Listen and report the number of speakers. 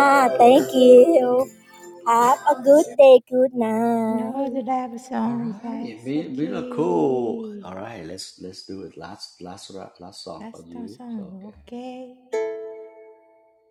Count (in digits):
3